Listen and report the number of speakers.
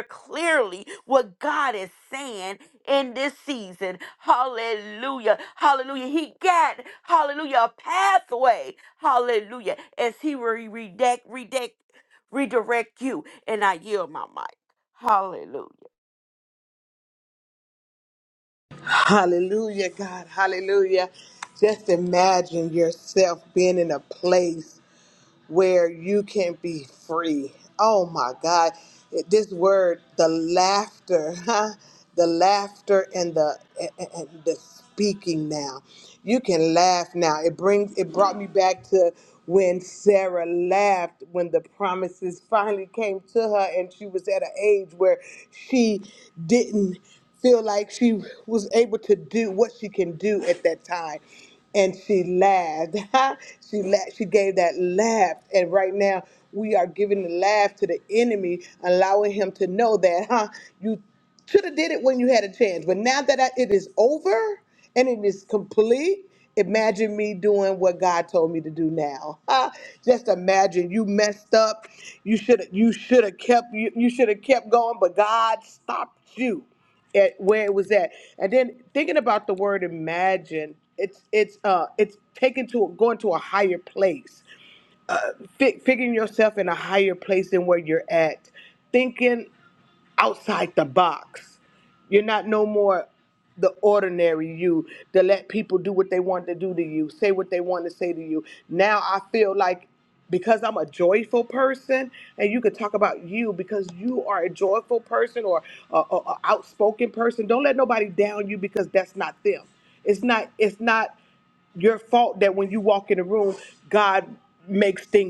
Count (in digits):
2